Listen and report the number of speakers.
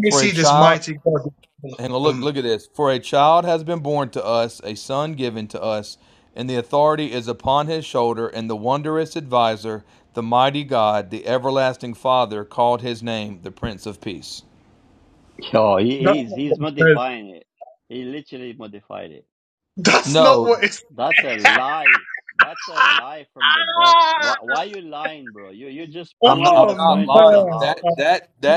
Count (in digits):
3